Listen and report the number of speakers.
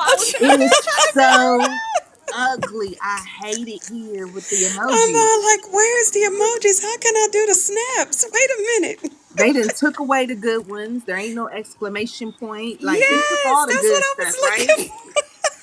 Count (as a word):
three